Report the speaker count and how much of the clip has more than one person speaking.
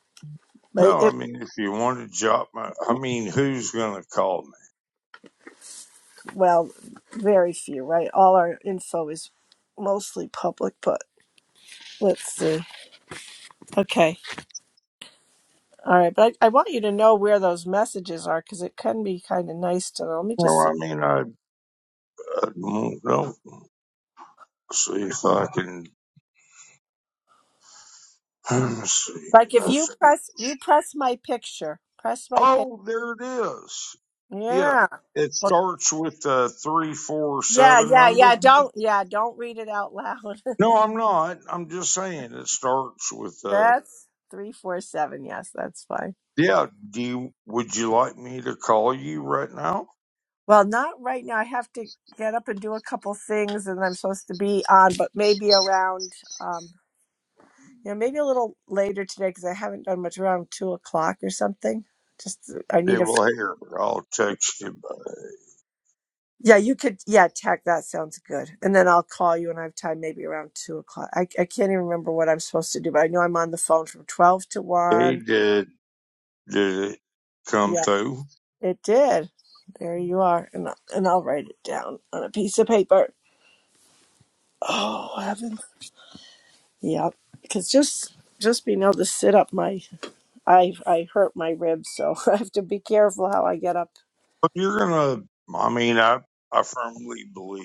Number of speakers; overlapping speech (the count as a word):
two, about 4%